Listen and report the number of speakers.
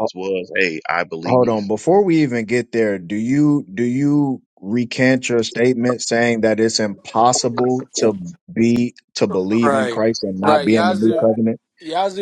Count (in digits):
3